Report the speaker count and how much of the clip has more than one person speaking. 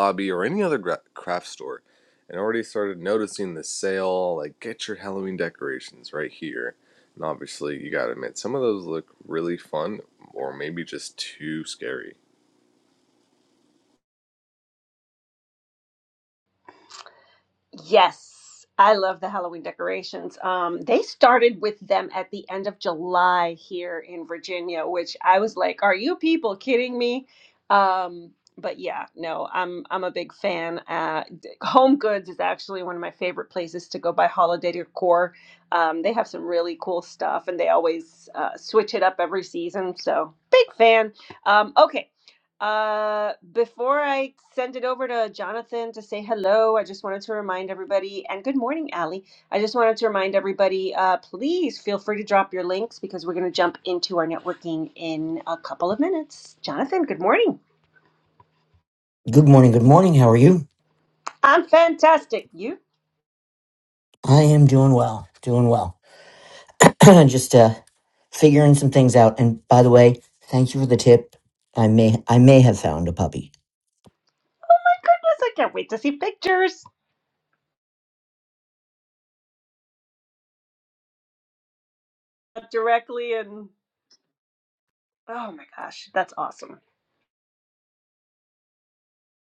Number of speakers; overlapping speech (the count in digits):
3, no overlap